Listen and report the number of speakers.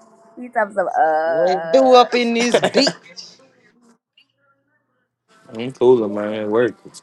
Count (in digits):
3